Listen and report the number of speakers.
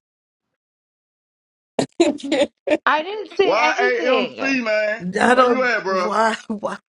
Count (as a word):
three